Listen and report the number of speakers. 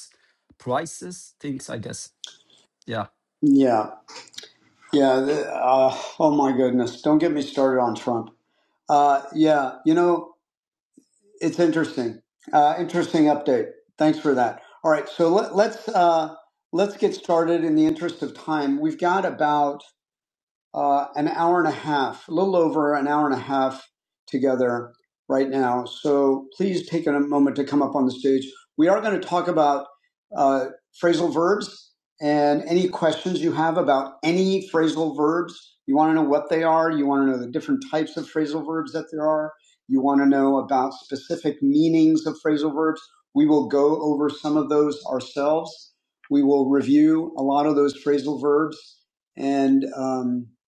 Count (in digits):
2